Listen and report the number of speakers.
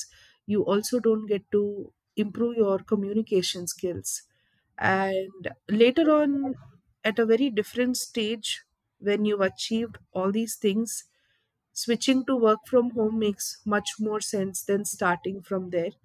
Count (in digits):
1